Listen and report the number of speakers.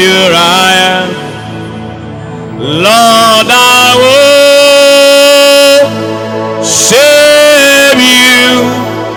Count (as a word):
one